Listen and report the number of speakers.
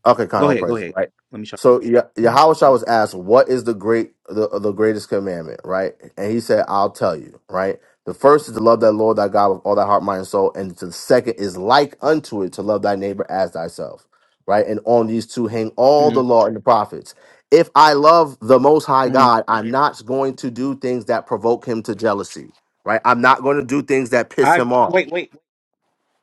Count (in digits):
2